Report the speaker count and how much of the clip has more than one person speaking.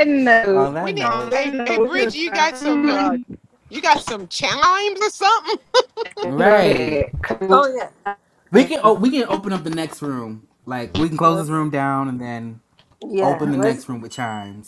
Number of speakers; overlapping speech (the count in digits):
4, about 29%